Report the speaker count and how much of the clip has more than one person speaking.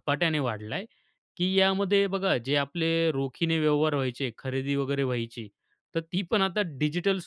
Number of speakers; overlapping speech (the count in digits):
1, no overlap